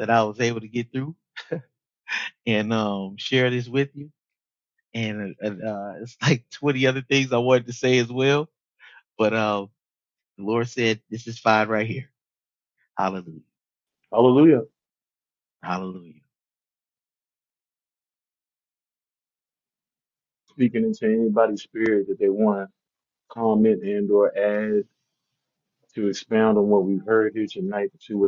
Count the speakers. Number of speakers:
2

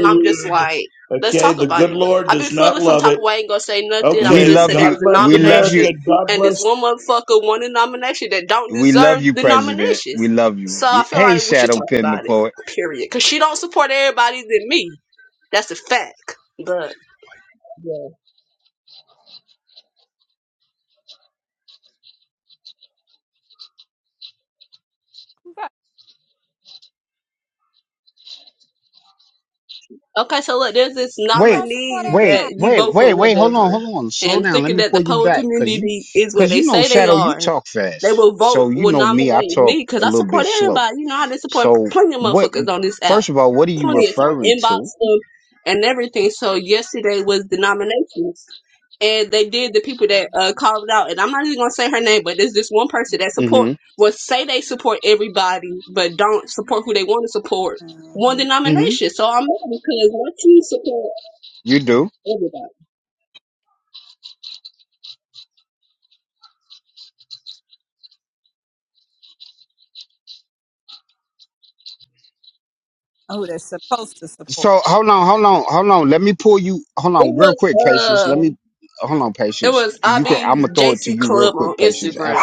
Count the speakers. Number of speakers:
4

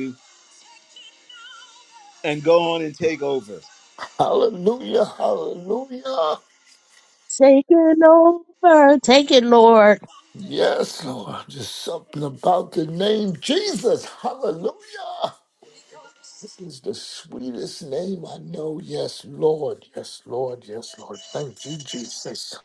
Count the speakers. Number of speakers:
3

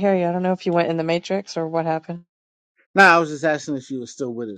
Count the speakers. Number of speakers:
2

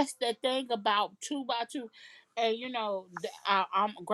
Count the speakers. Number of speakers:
1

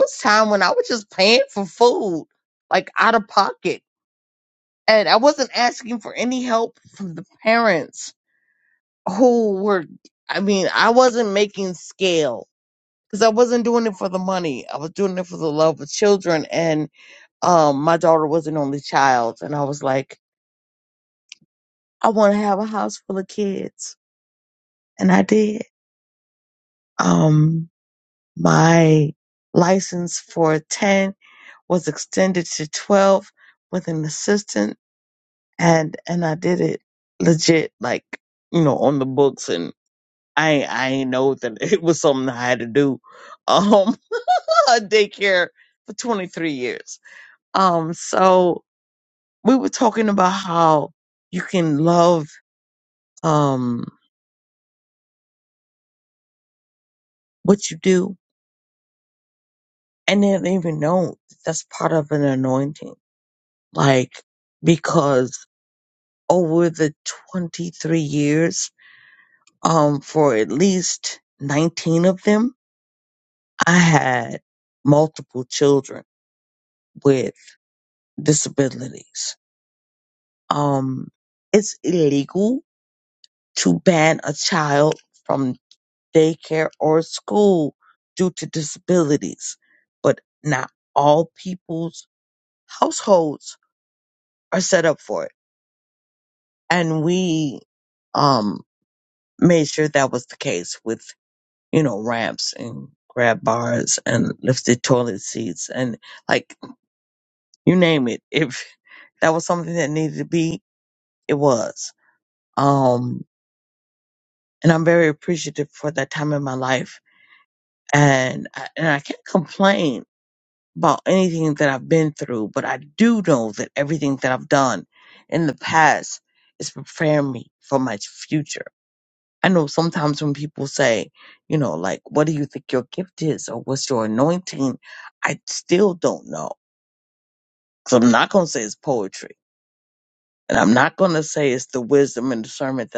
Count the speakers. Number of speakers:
1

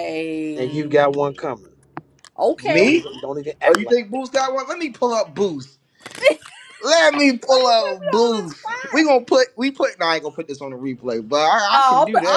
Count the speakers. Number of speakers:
3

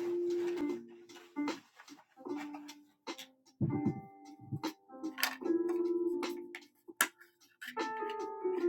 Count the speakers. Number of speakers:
0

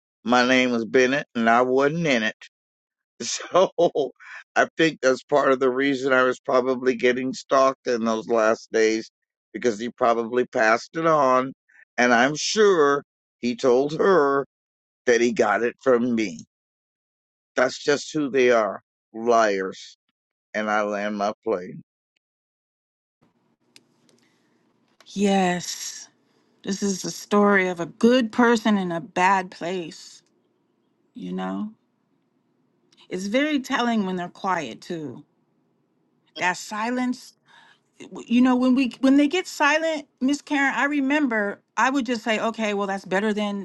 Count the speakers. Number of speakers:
2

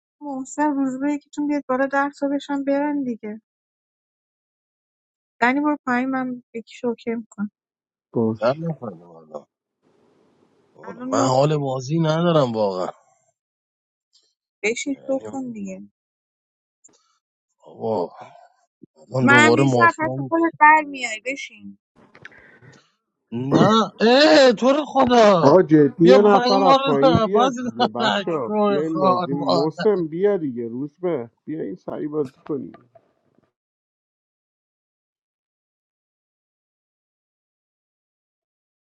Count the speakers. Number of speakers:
3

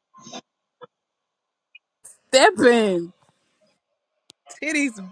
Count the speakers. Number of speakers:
1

